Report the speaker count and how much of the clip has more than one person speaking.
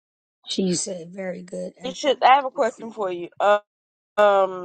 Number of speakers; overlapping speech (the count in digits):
2, about 9%